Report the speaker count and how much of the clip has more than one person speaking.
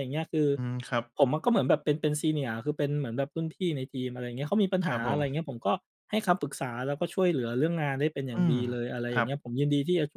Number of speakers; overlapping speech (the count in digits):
2, about 9%